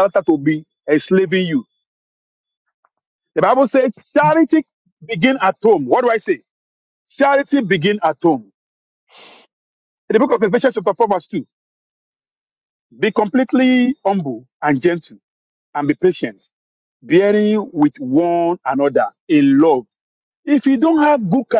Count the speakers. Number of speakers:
one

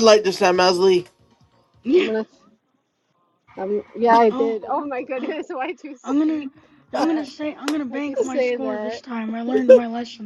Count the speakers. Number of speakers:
three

